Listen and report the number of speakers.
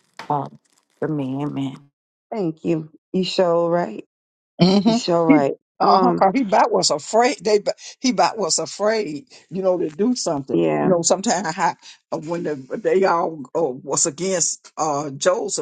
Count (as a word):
three